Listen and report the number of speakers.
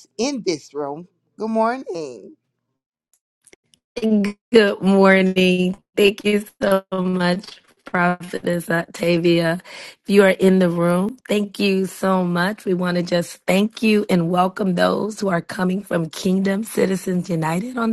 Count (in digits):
2